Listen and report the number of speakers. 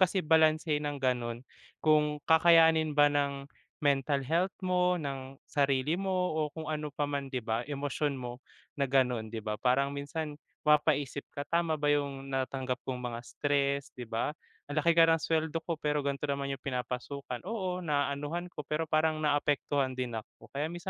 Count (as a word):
one